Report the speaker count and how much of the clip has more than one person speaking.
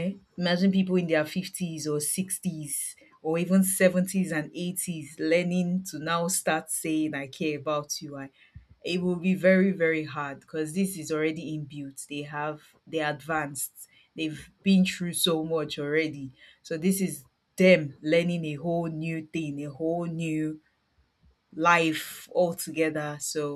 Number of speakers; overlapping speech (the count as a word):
one, no overlap